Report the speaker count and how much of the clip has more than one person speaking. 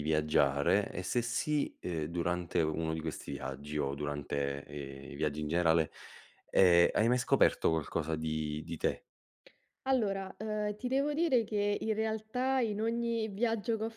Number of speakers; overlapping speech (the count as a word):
two, no overlap